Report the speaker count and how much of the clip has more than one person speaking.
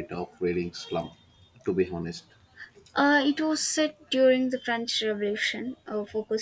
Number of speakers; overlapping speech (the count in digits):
2, no overlap